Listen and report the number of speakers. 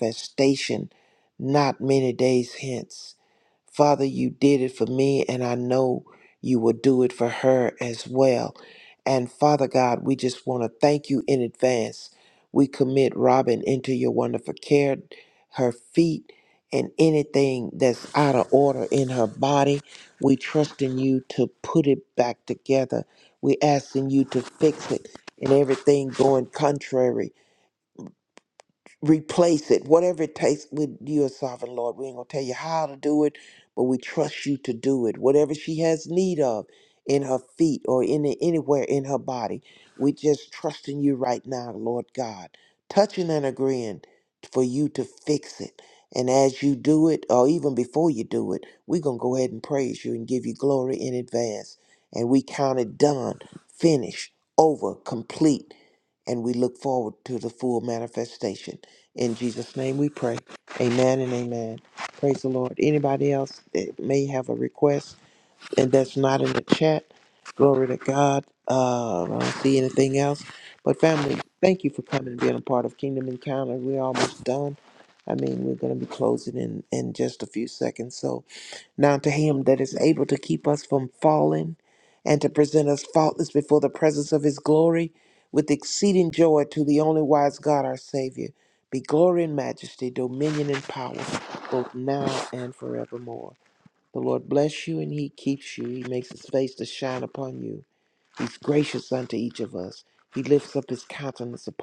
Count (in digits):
1